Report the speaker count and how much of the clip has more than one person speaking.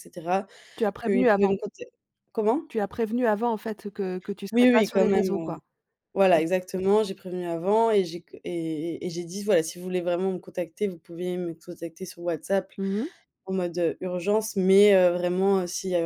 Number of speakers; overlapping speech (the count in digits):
2, about 10%